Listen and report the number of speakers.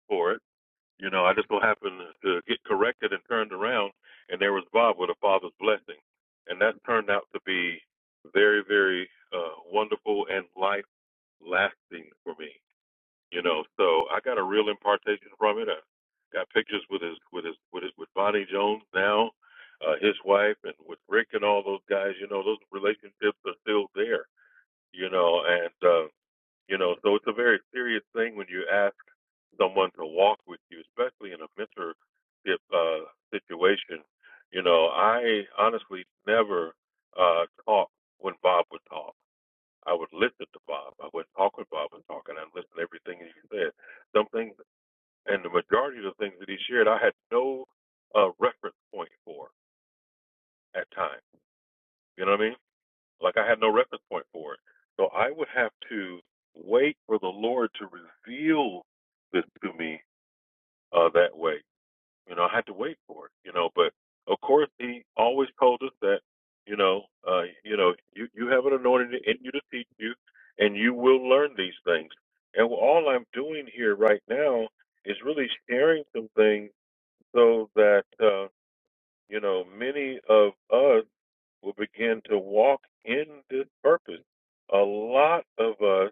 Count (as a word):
one